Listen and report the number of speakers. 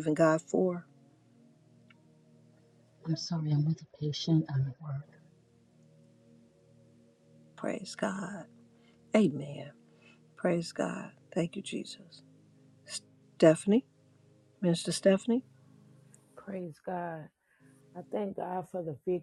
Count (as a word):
three